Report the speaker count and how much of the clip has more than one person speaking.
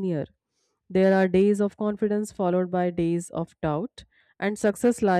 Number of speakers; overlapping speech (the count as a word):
one, no overlap